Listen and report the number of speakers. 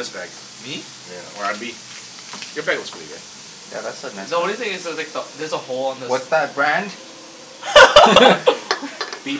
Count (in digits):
3